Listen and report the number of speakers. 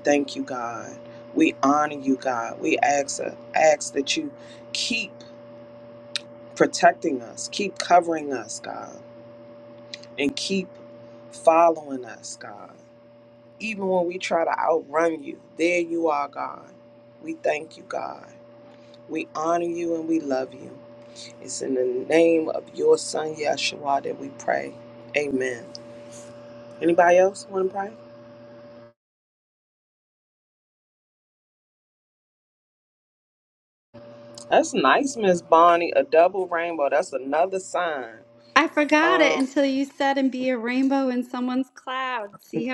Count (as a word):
two